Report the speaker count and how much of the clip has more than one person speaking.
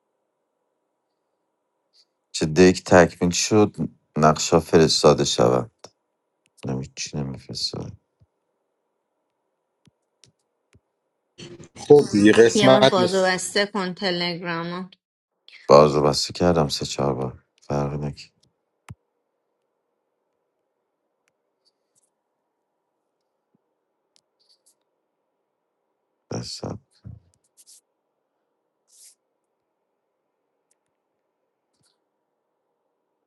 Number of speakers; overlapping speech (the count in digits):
3, about 3%